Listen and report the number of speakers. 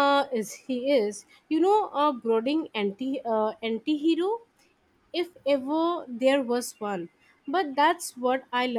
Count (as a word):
one